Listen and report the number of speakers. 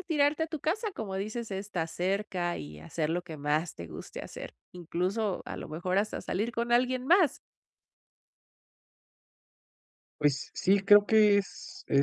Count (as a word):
two